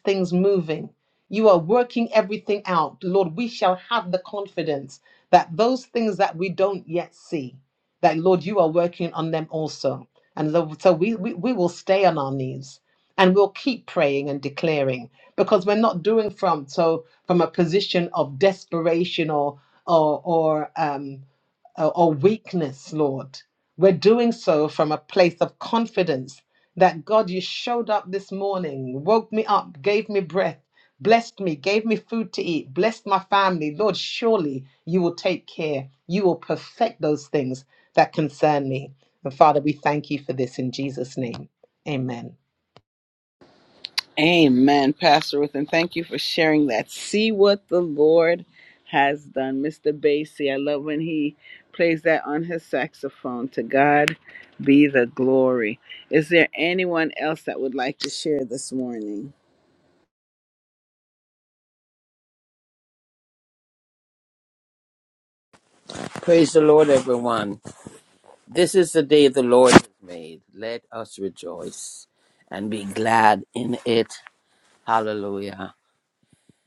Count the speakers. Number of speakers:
three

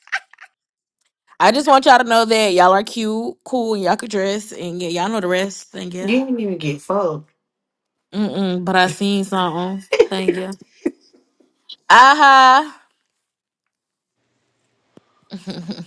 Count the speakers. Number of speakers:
two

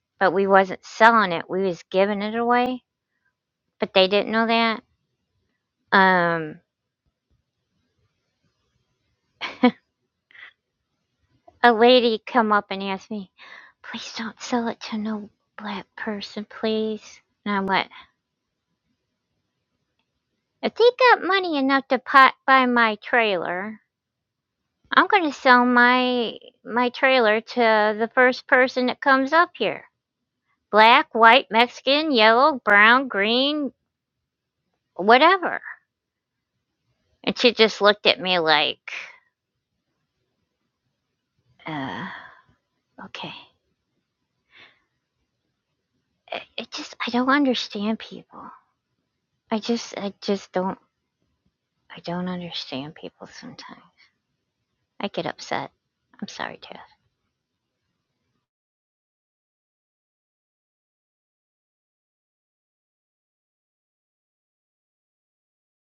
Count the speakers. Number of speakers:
one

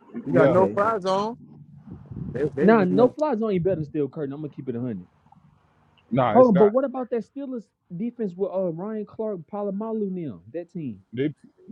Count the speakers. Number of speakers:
three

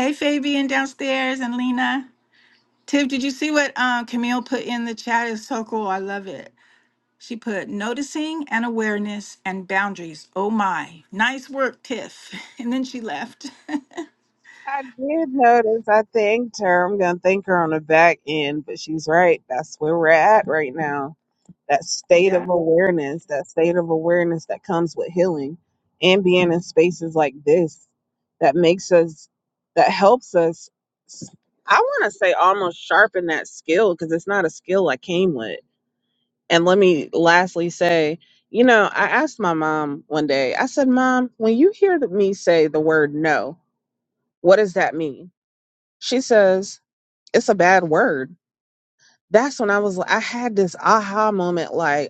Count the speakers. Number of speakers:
two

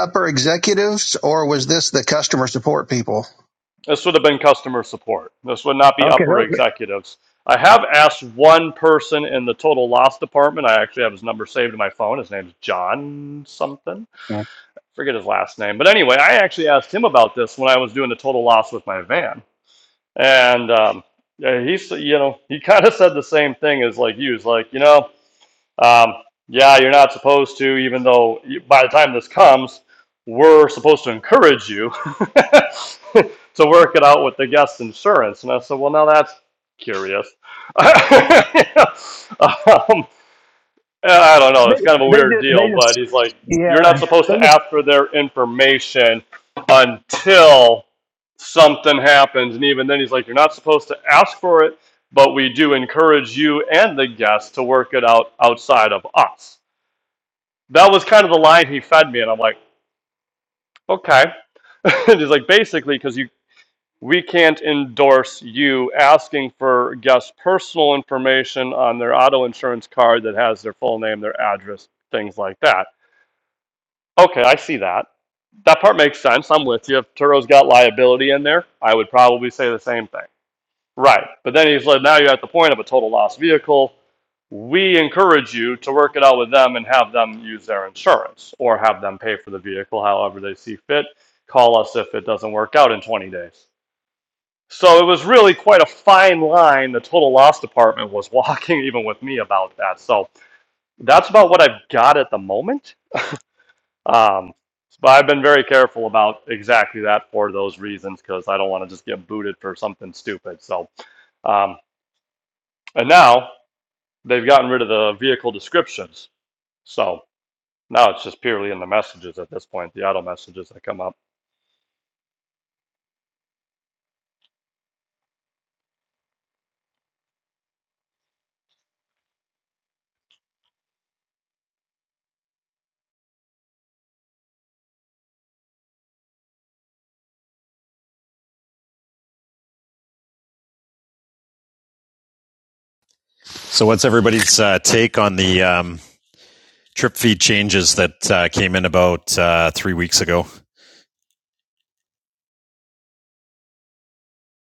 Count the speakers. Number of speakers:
three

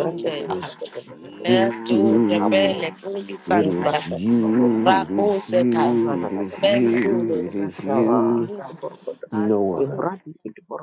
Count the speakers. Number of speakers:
three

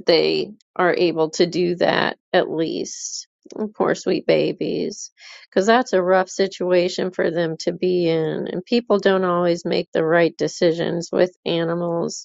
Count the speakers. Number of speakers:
one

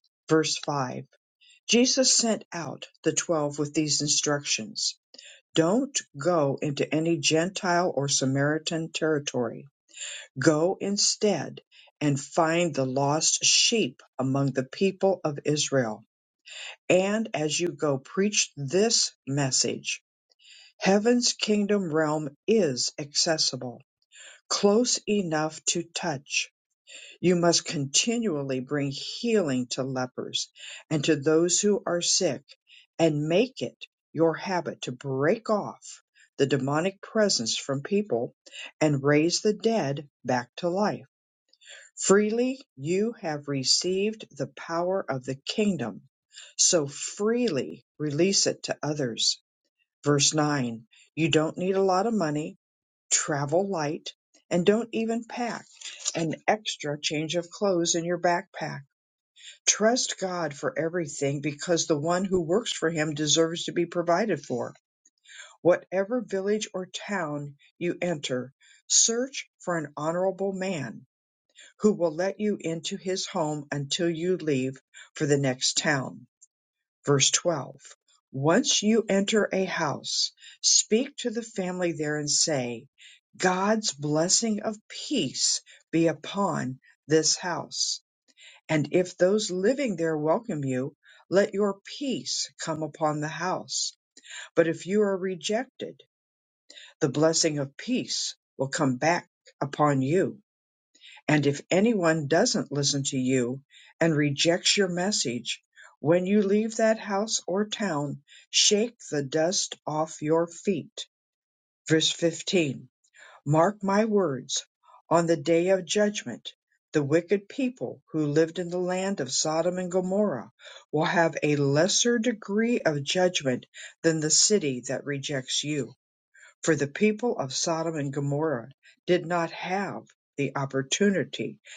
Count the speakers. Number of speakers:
one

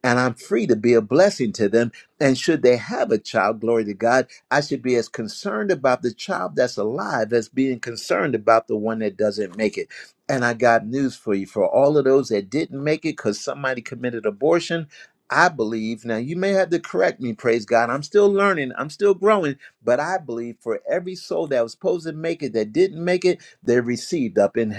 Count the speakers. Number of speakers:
one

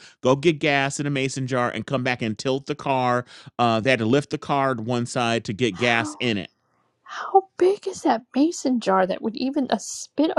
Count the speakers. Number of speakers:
two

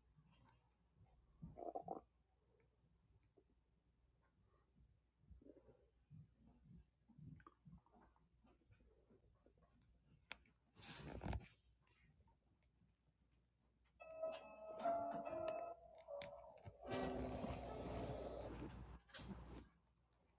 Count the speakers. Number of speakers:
zero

